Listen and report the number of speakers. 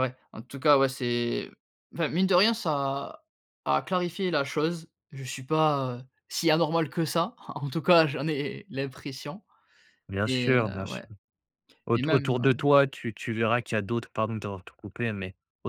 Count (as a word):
two